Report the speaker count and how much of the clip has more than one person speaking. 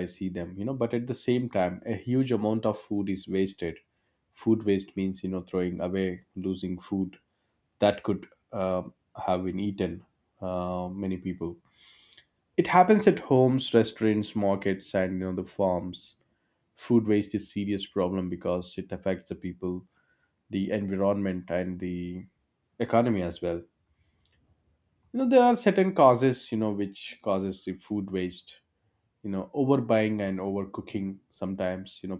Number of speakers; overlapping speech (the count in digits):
1, no overlap